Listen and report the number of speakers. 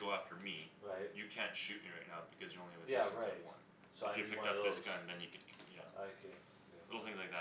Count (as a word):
two